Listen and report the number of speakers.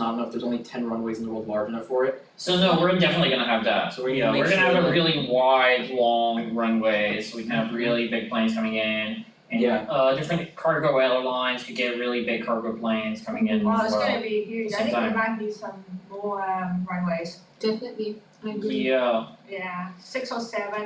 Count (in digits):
4